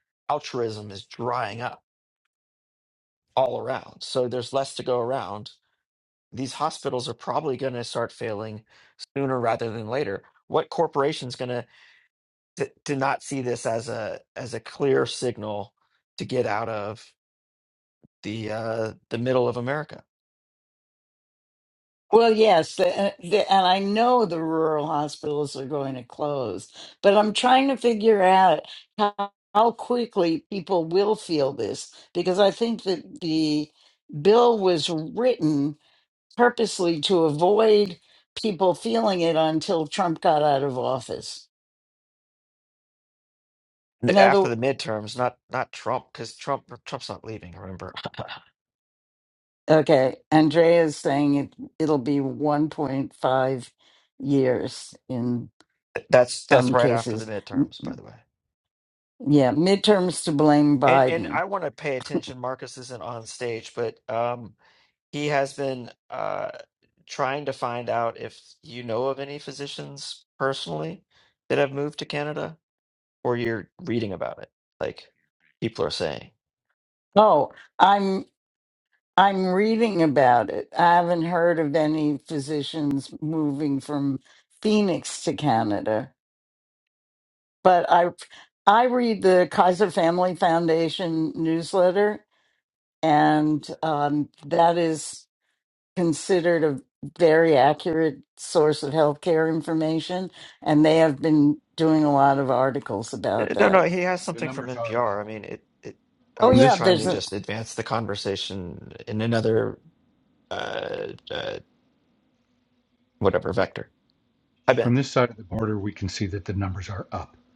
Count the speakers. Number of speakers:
3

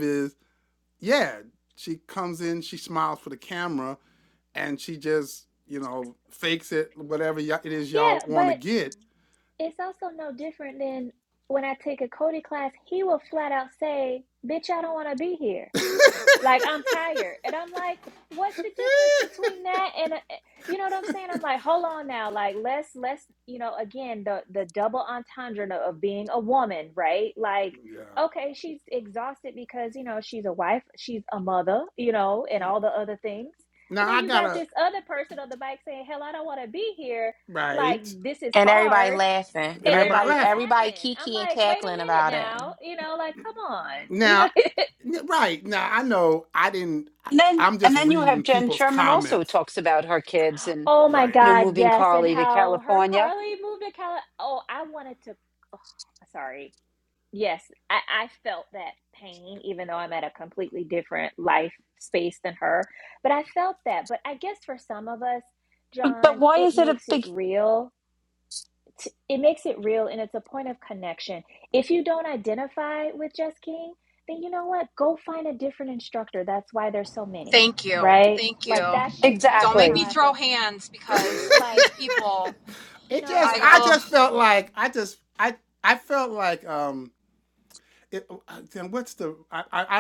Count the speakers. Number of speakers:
5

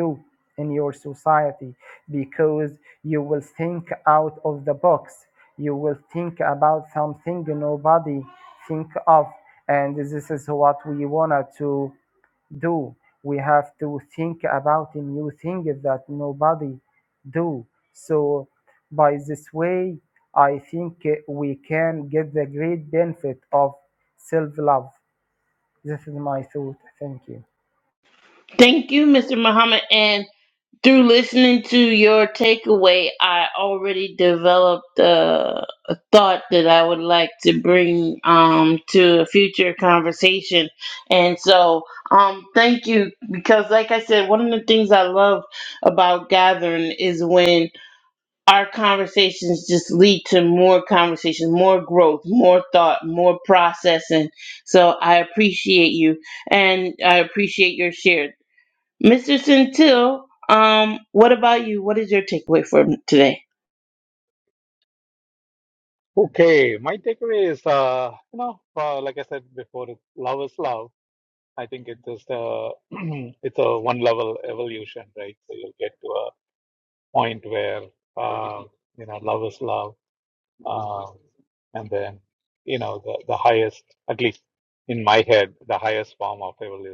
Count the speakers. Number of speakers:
3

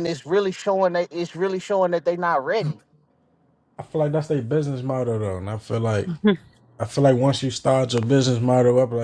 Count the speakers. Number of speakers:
2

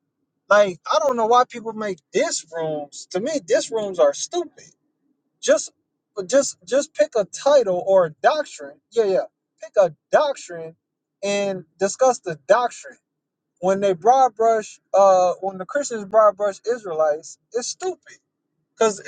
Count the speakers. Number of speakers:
1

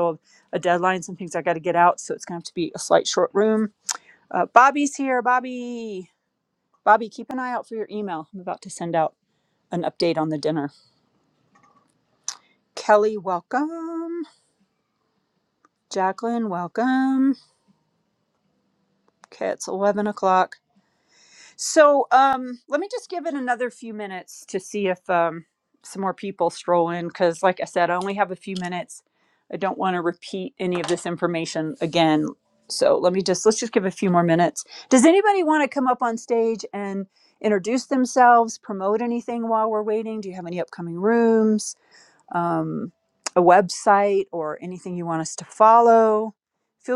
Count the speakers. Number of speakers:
1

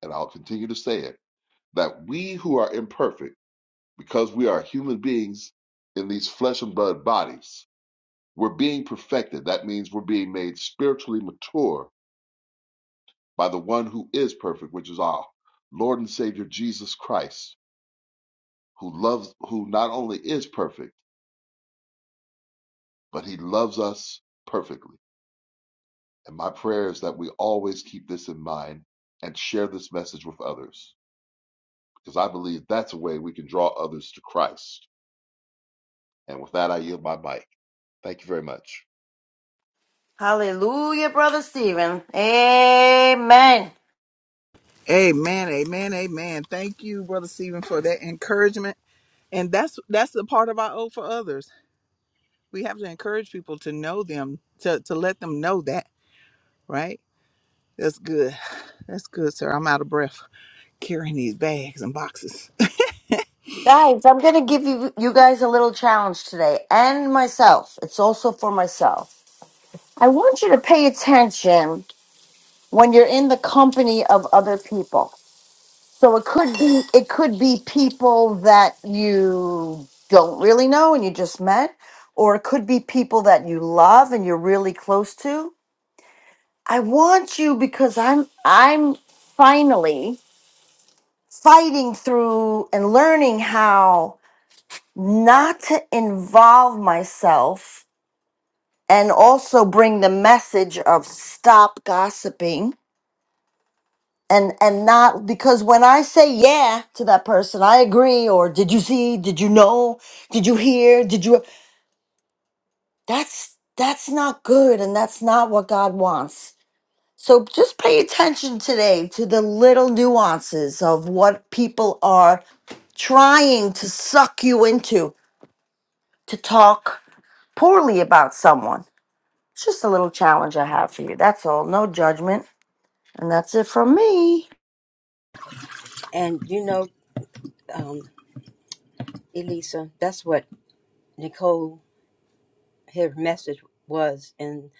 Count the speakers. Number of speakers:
4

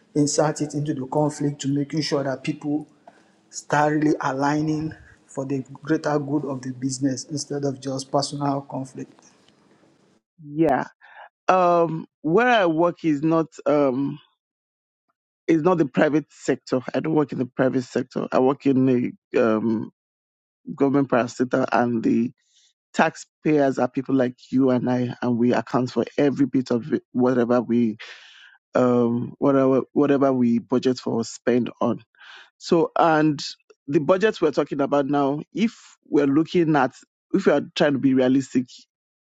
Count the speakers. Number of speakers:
2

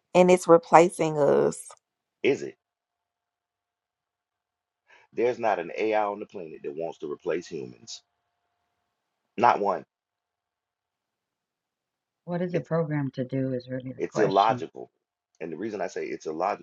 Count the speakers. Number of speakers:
3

